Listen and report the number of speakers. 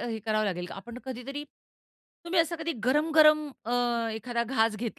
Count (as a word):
one